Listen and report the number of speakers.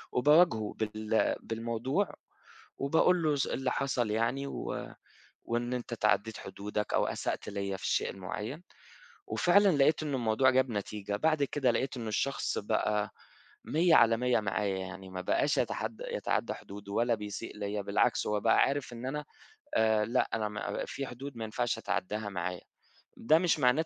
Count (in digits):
1